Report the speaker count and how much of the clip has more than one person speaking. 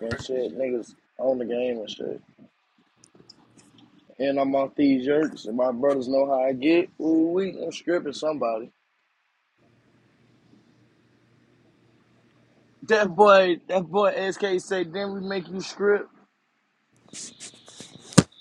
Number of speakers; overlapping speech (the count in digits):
1, no overlap